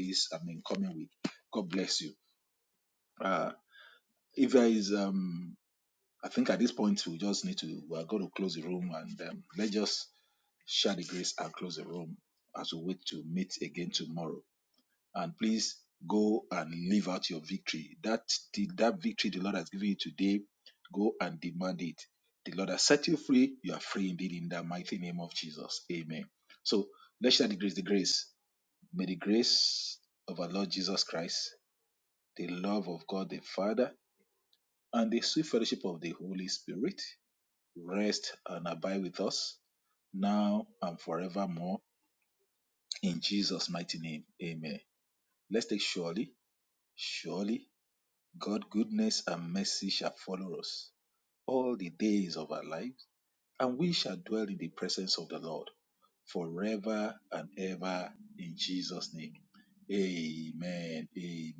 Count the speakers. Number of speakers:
1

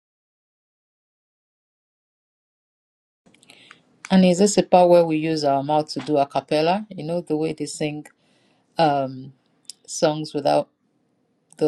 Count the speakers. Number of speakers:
1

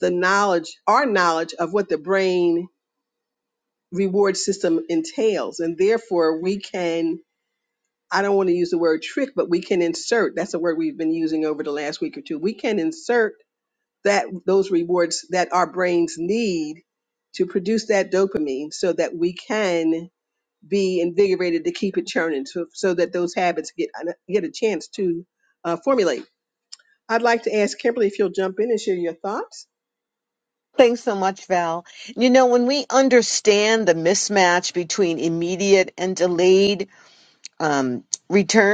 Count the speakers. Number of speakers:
2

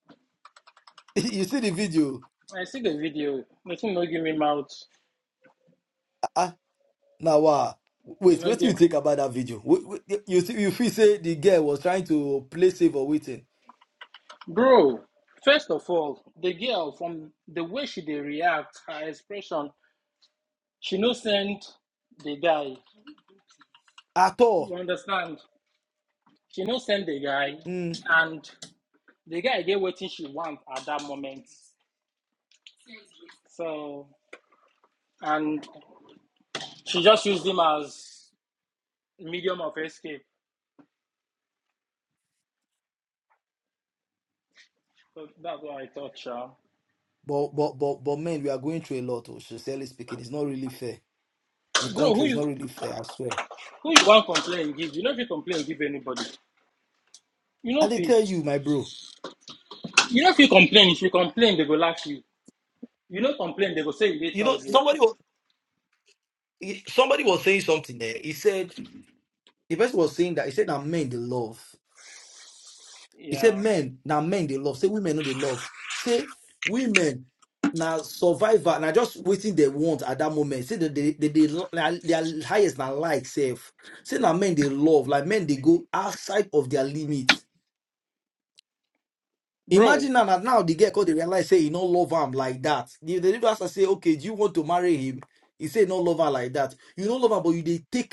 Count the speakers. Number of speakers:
2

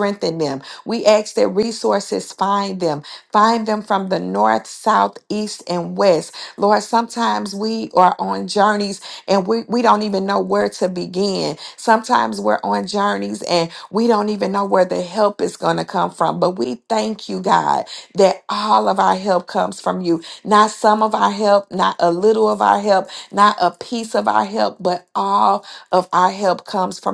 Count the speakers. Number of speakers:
1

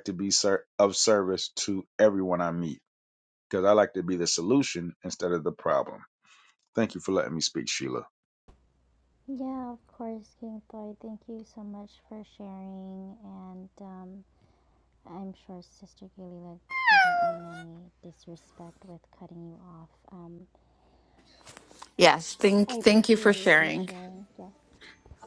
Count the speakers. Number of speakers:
3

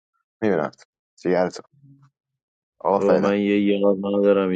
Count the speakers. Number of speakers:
2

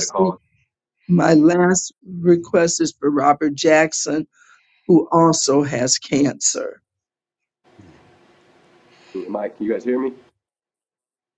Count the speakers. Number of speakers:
2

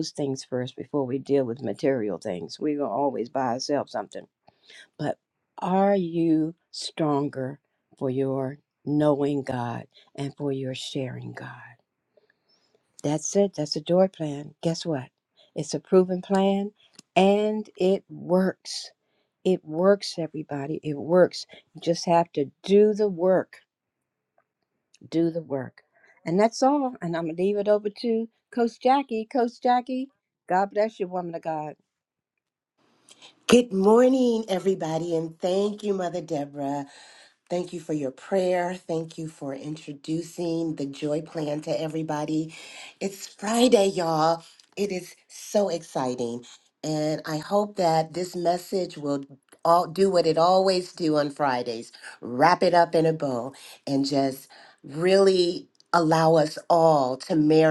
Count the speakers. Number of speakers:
2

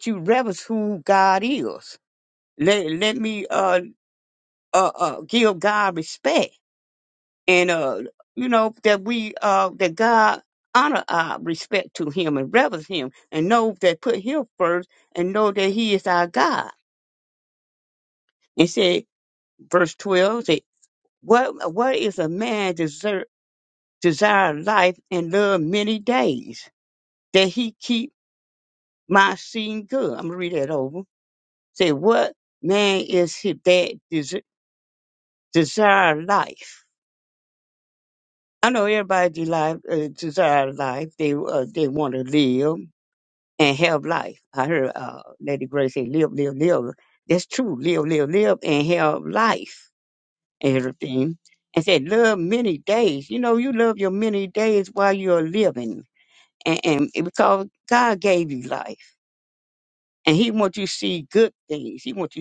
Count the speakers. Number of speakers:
1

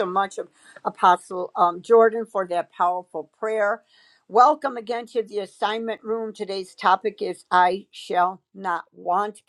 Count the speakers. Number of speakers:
1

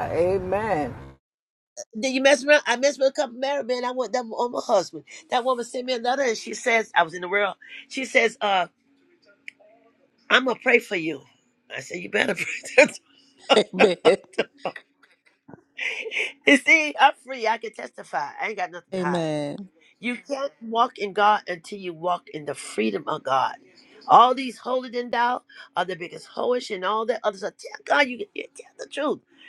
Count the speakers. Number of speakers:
3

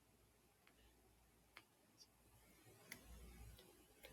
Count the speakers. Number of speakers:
0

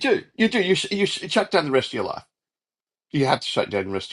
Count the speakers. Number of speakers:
1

